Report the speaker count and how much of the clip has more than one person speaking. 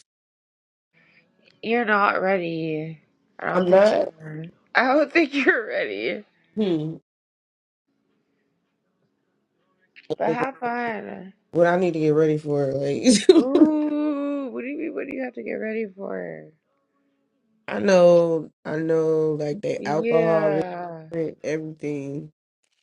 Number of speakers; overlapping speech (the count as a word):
two, about 7%